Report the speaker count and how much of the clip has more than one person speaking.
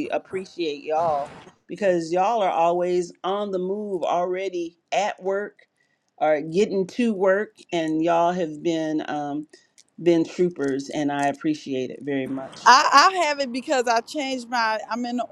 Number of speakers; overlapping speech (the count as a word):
two, about 1%